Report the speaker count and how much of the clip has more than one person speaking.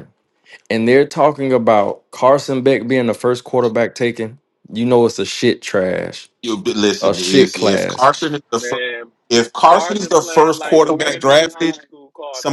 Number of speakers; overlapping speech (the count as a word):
three, about 28%